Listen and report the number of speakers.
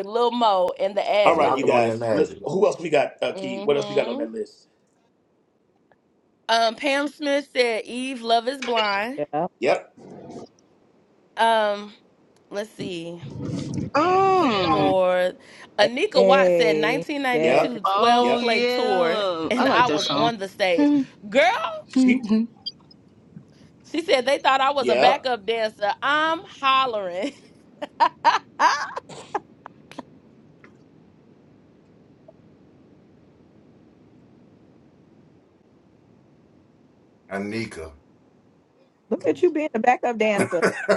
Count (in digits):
5